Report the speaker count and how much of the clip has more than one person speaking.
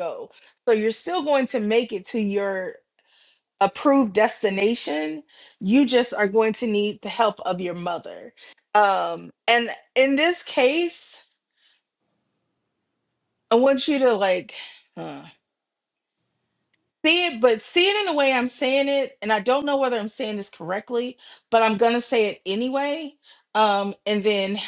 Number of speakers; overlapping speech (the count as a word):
one, no overlap